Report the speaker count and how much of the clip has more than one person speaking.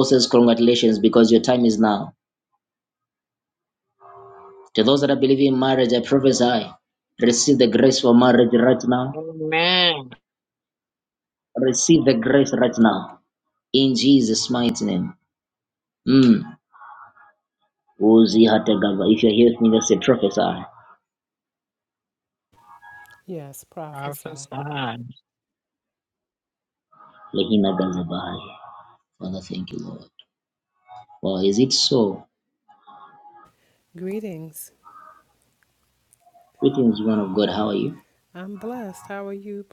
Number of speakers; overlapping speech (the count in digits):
3, about 1%